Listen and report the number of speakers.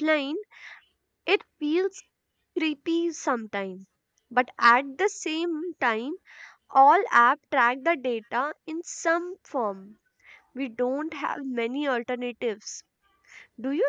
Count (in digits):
1